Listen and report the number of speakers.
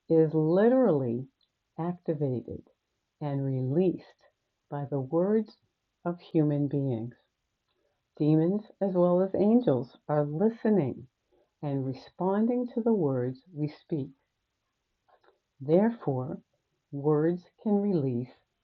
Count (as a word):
one